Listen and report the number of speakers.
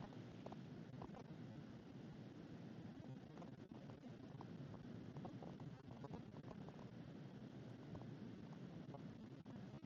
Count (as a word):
zero